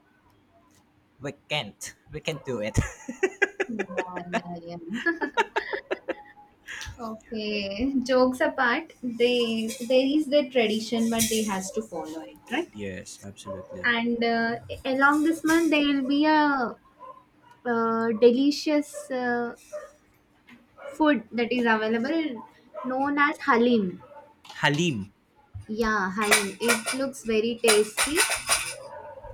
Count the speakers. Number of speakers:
two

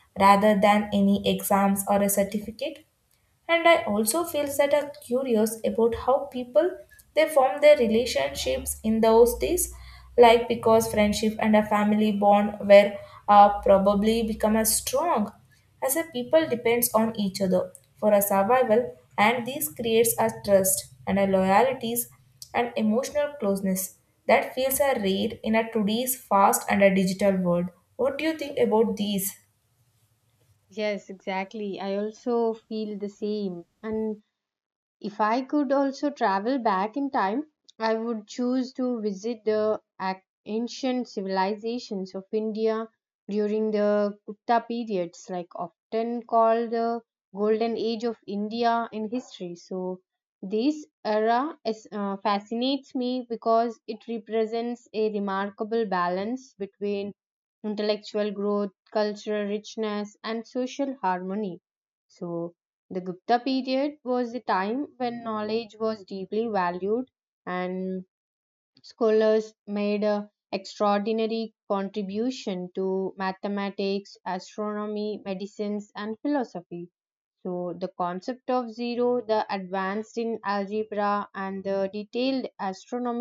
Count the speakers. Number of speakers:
two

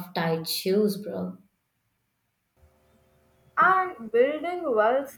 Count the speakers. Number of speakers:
two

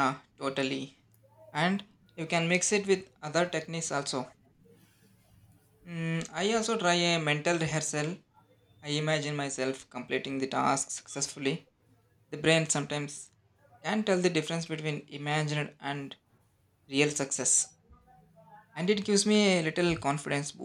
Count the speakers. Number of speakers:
one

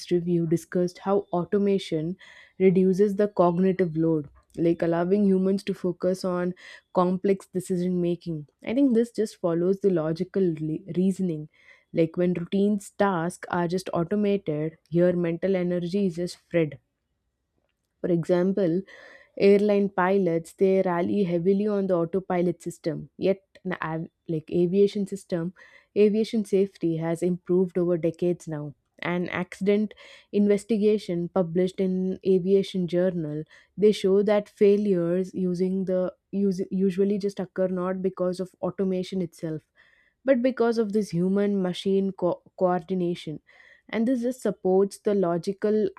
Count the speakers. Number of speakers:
one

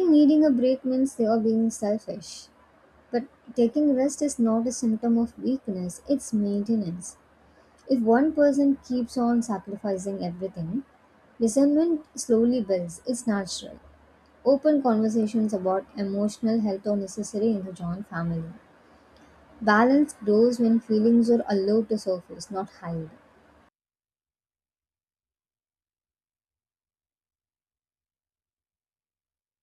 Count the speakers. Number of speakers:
one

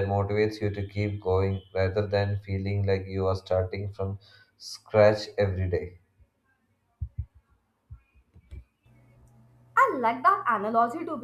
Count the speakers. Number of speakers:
two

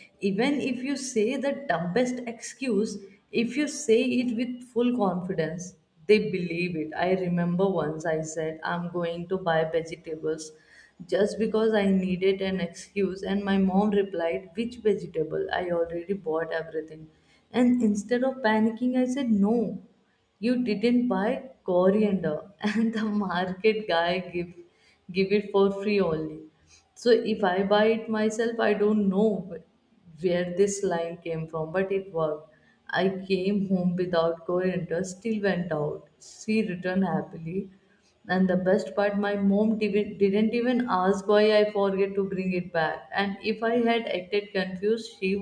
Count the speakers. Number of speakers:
one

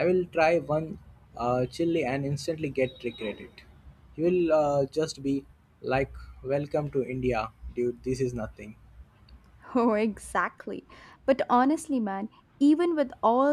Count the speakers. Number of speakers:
two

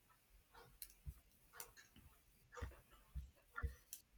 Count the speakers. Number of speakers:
zero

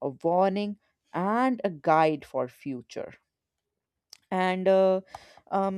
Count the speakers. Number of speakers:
one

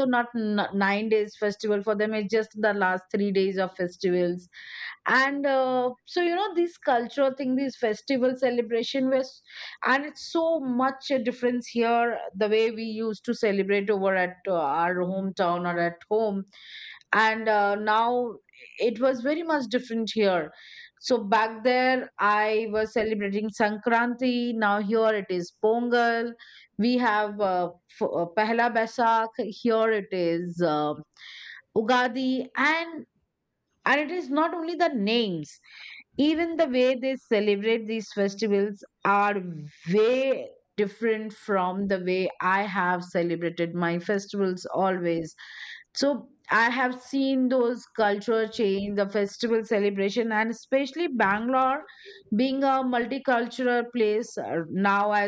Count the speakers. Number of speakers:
one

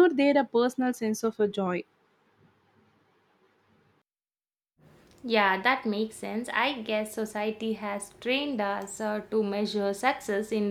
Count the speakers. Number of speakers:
two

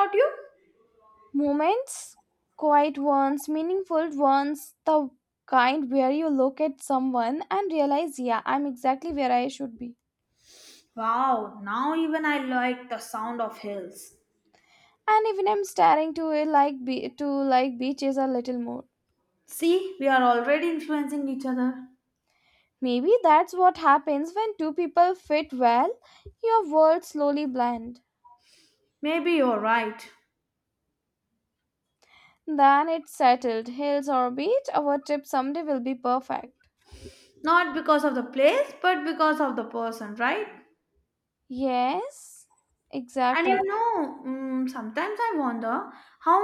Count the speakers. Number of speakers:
two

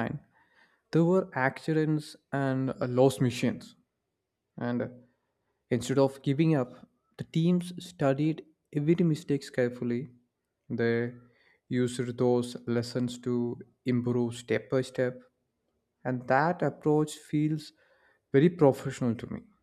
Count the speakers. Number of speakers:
one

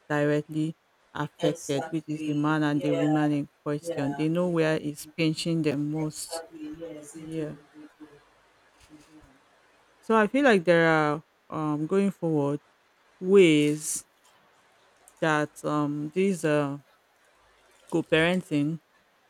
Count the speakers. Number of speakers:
two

